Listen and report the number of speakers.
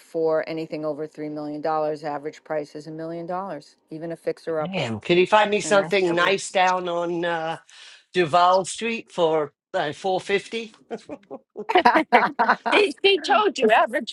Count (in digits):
3